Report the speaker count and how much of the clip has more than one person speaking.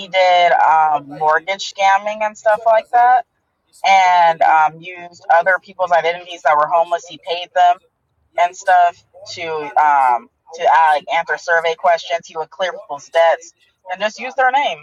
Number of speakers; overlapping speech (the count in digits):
1, no overlap